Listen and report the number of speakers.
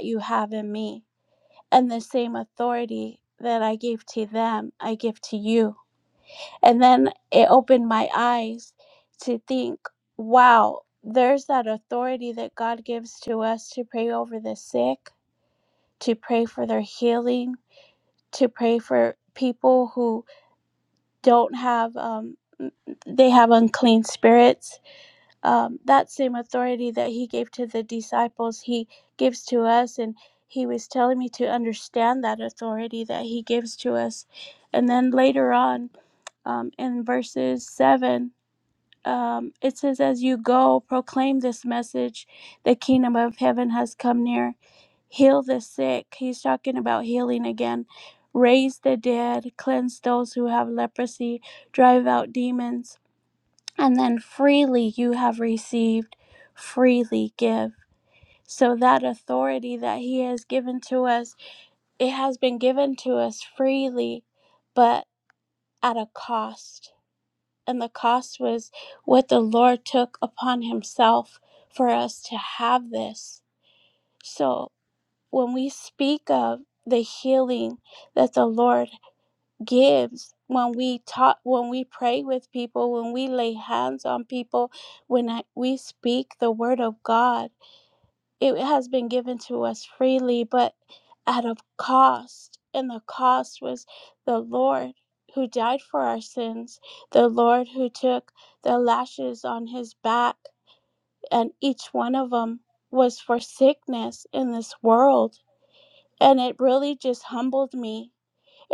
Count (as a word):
one